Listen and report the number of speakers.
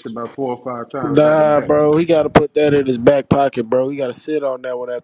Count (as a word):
two